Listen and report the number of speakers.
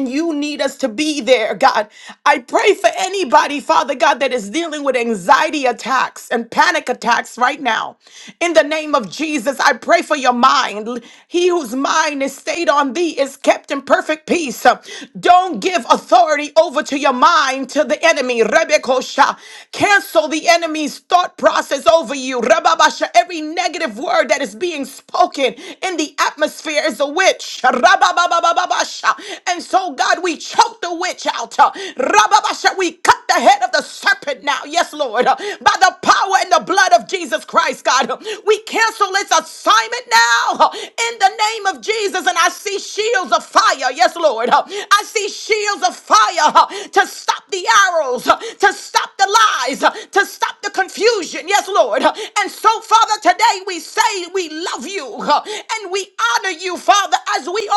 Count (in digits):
1